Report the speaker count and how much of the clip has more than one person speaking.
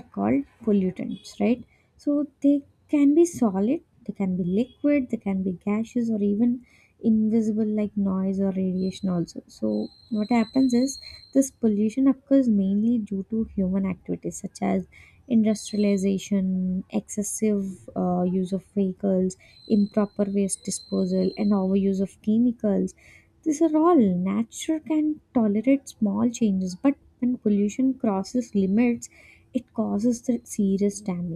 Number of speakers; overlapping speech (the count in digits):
1, no overlap